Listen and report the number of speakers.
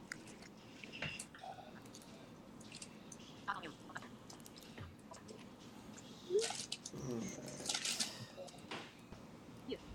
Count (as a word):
zero